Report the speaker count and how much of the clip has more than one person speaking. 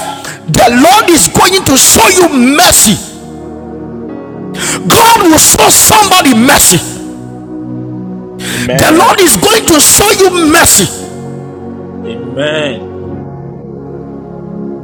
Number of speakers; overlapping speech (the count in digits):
2, about 4%